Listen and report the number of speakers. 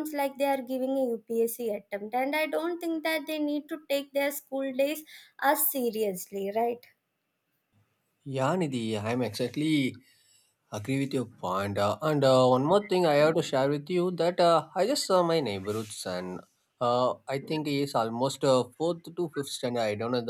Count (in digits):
2